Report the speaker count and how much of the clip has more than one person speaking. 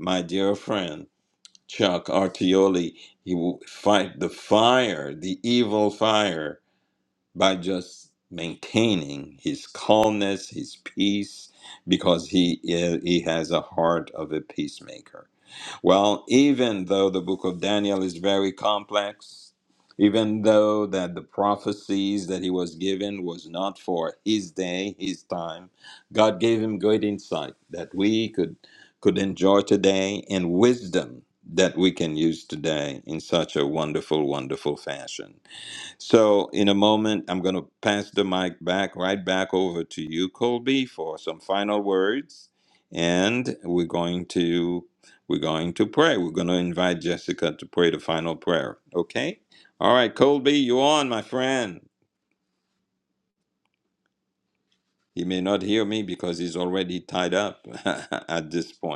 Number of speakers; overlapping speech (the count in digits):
1, no overlap